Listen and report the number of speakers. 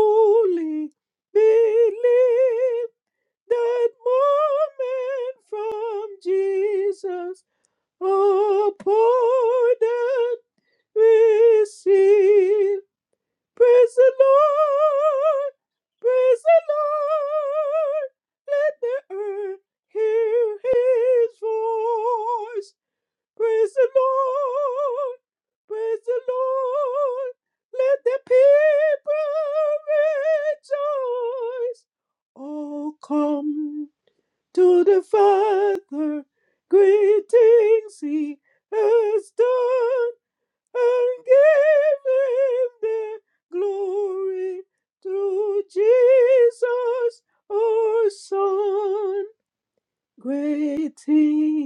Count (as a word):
one